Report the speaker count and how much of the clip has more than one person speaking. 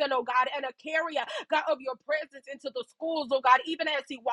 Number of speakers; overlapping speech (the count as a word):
one, no overlap